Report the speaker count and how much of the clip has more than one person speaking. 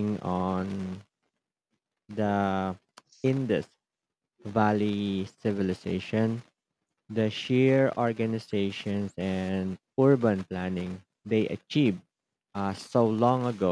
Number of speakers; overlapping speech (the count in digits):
1, no overlap